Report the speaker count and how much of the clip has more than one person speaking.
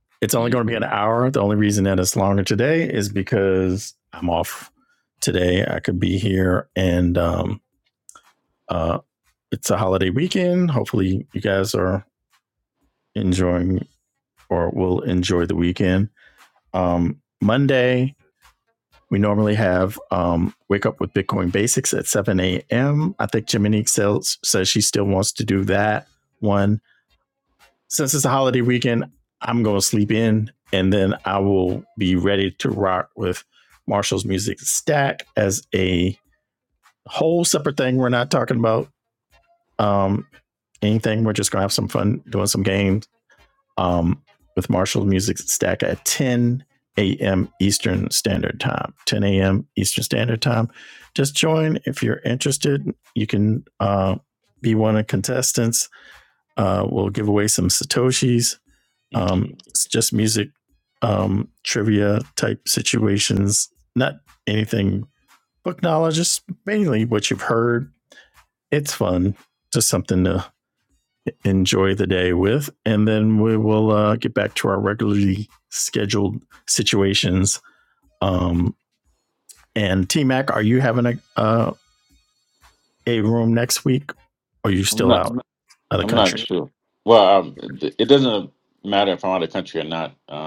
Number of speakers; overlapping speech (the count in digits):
2, about 1%